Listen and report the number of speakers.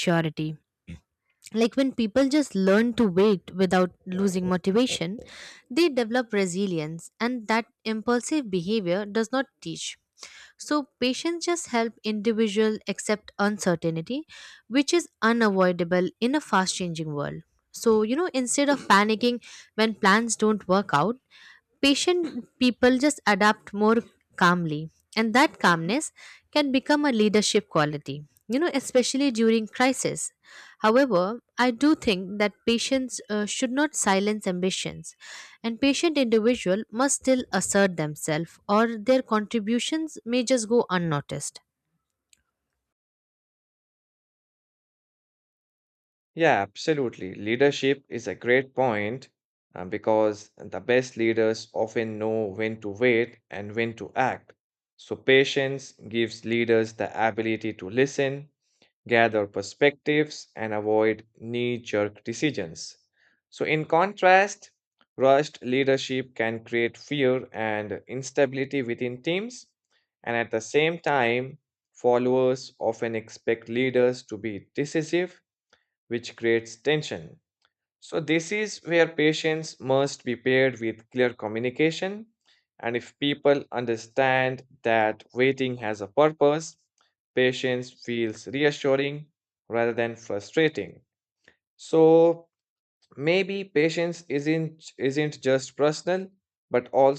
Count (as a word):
two